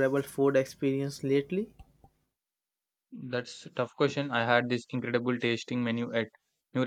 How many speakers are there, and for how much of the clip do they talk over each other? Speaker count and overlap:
2, no overlap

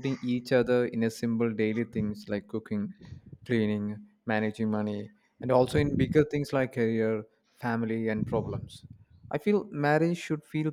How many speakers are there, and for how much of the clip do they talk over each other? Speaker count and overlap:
1, no overlap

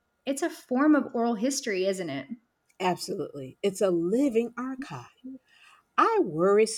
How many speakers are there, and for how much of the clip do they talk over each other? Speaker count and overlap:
2, no overlap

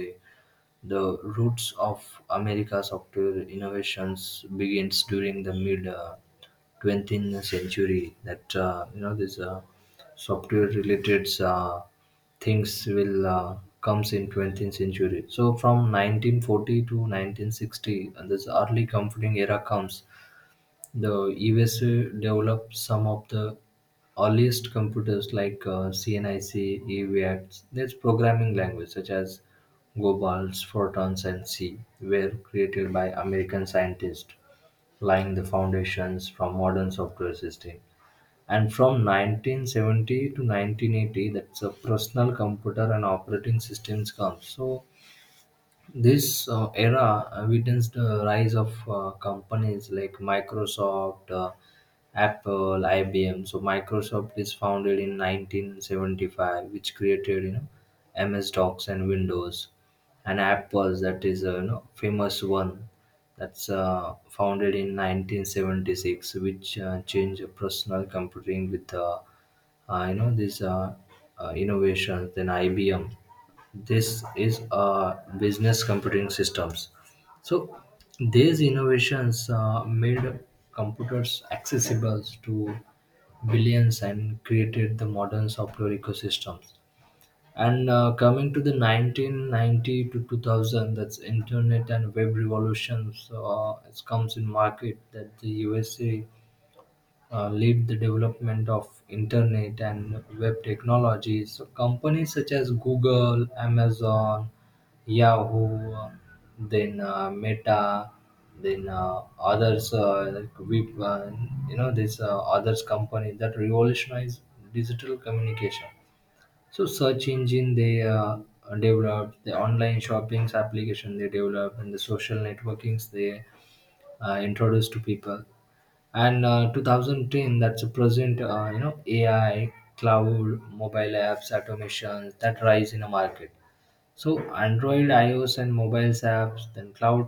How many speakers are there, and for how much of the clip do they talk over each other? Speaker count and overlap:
1, no overlap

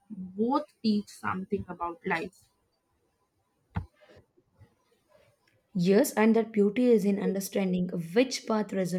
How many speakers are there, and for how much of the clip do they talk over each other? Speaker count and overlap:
2, no overlap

